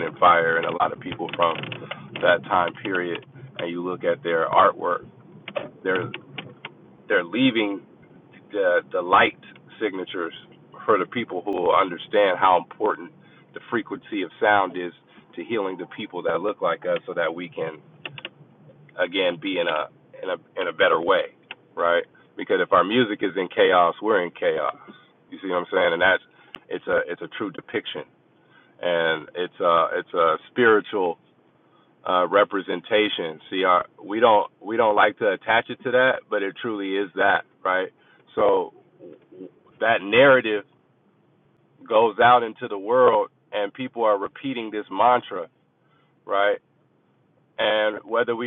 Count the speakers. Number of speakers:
one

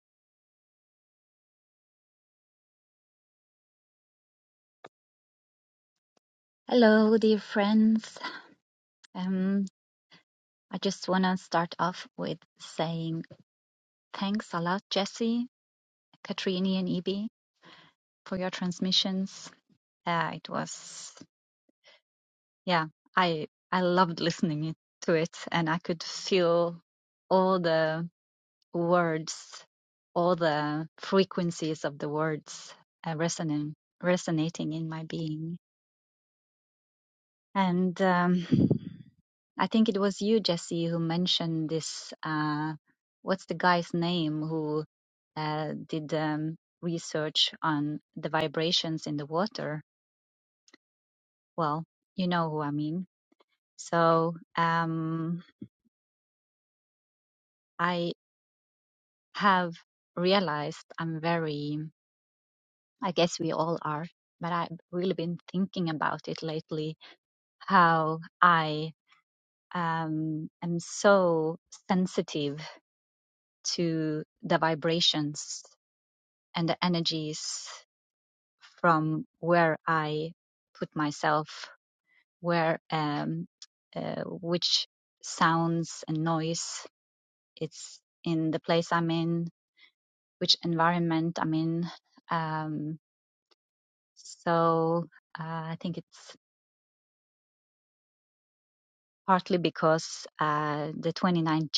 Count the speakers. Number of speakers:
one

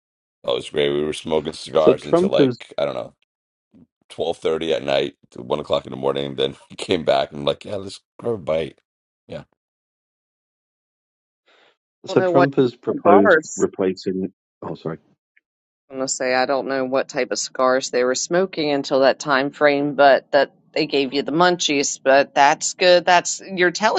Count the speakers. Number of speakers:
three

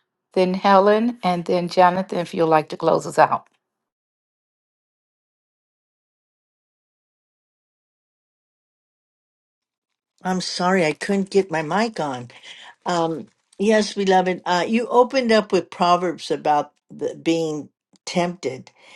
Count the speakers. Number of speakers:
two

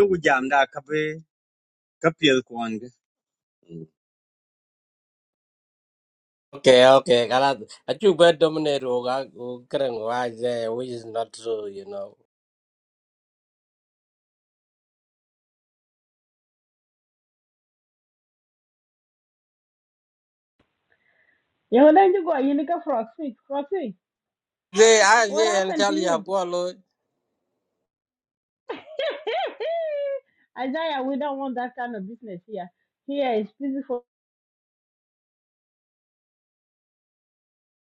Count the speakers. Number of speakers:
three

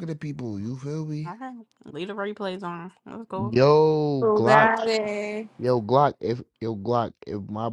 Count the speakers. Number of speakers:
three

